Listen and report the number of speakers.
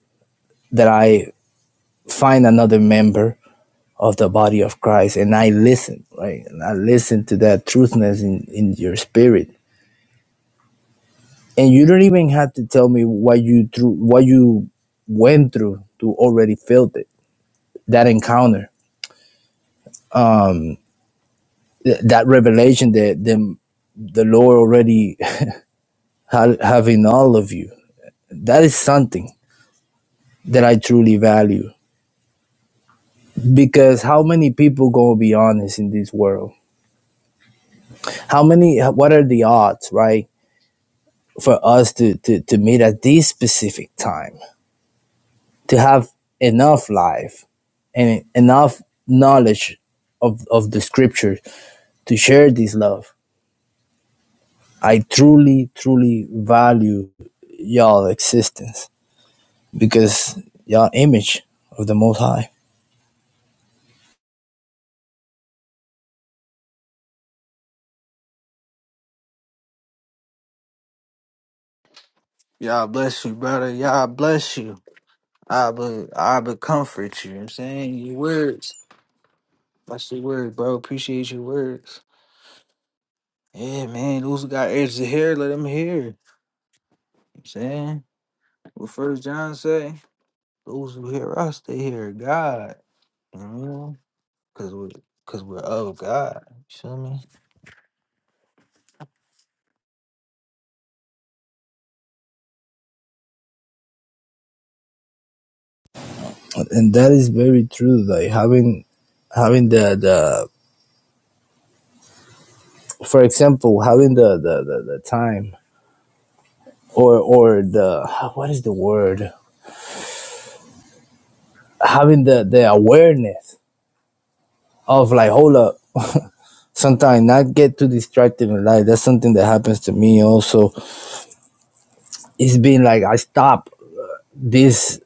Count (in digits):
2